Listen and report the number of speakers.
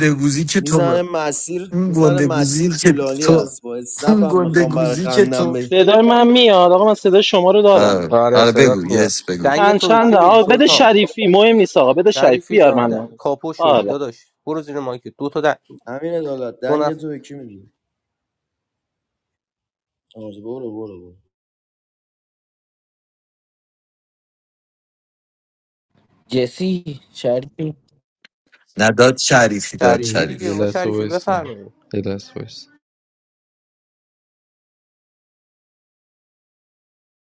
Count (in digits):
6